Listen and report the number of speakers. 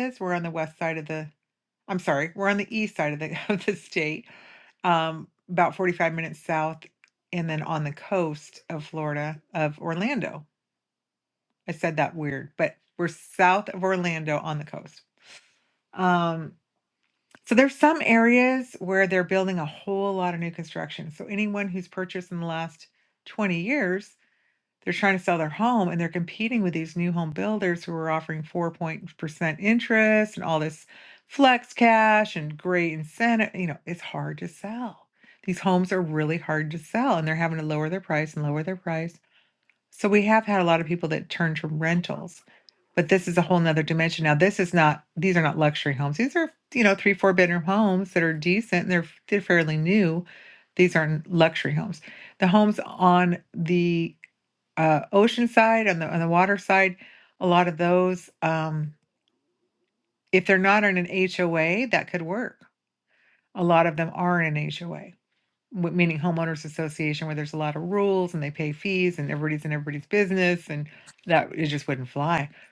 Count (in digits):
1